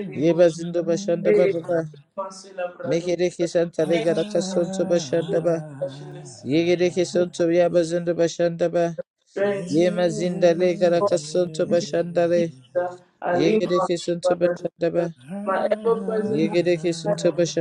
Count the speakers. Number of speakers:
two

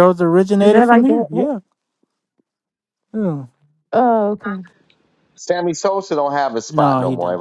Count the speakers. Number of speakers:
three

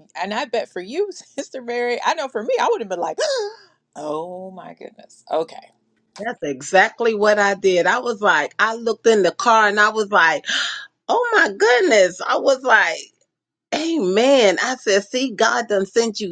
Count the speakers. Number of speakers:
two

